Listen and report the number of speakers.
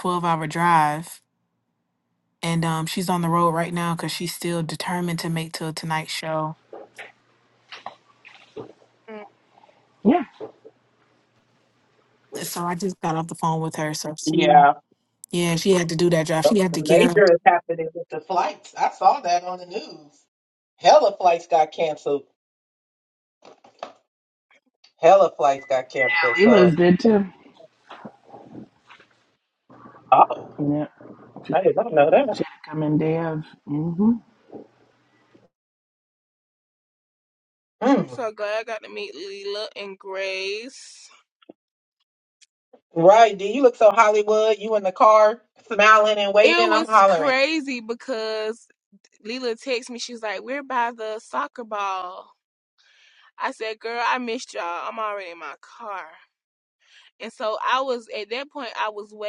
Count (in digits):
4